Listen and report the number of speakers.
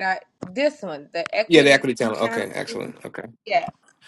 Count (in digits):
2